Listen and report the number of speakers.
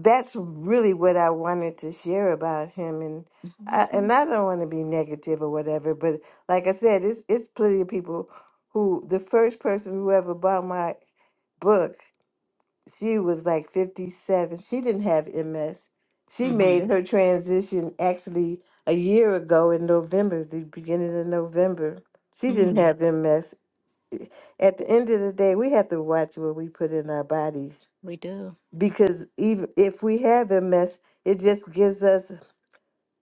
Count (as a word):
two